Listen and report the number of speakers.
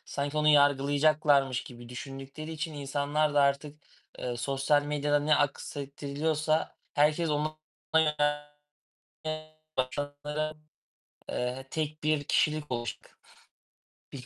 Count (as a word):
one